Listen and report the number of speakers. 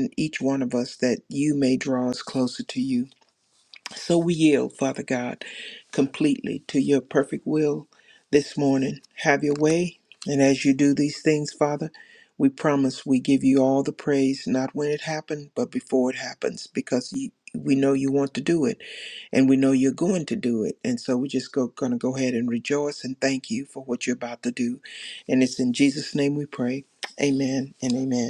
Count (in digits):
1